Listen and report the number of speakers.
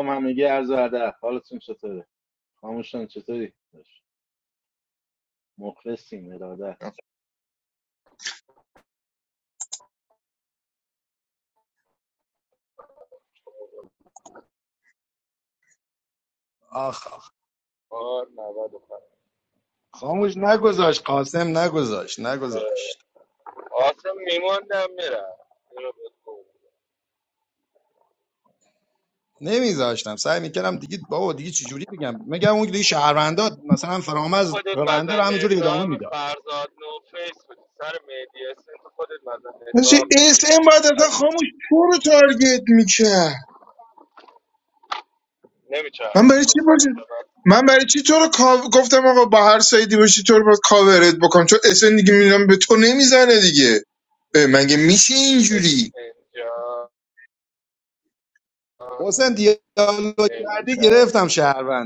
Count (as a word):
four